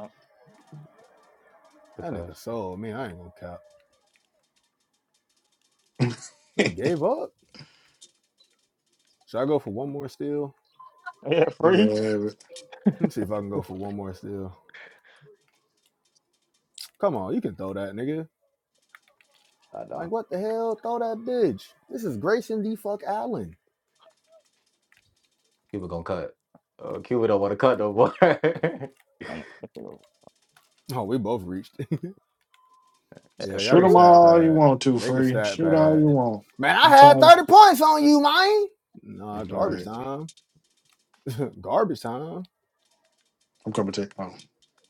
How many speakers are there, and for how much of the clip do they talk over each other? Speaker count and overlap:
four, about 8%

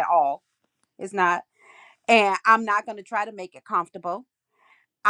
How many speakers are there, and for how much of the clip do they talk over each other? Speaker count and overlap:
one, no overlap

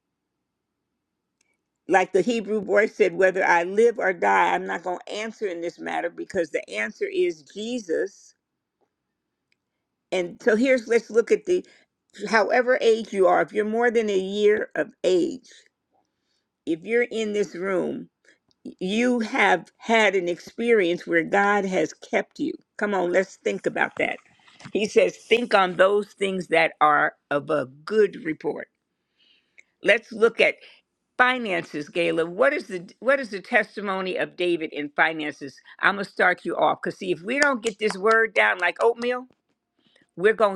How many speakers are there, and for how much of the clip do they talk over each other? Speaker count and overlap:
one, no overlap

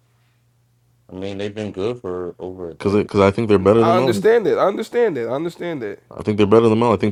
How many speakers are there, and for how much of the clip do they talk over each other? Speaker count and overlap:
three, about 9%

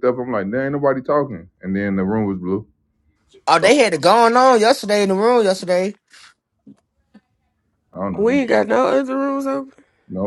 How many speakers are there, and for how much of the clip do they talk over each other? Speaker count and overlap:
three, about 3%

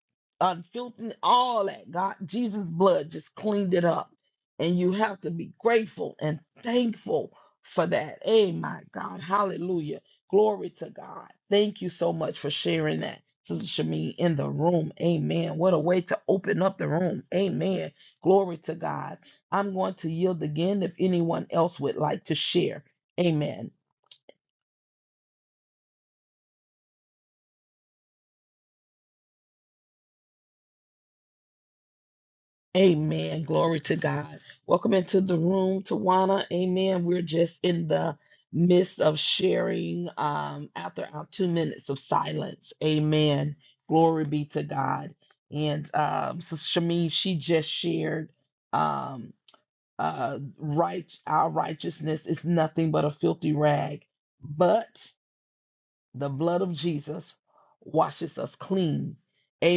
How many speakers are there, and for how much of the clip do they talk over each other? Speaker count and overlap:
one, no overlap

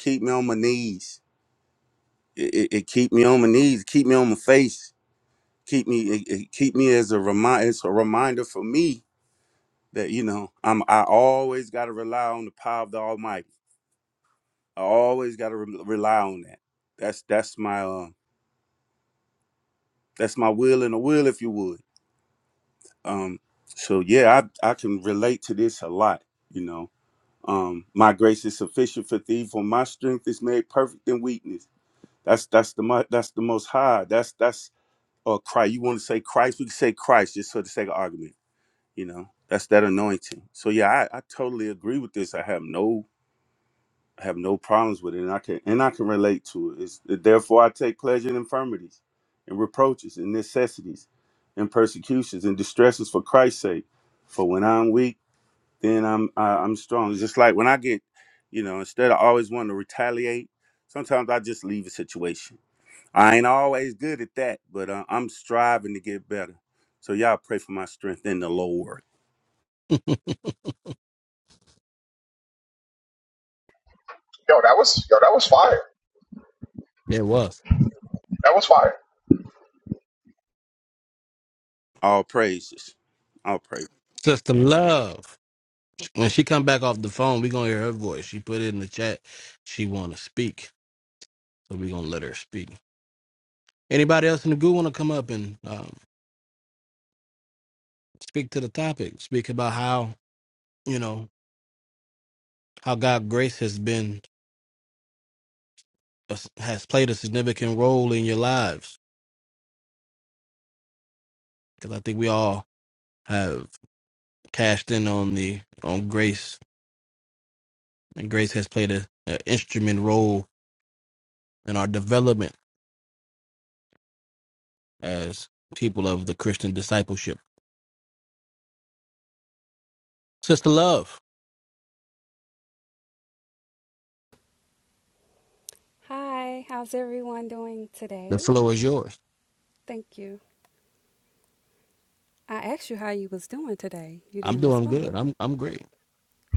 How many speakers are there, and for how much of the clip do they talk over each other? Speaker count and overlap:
four, about 1%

